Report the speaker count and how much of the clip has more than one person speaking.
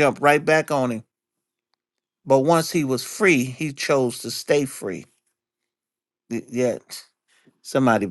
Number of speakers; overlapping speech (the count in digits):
1, no overlap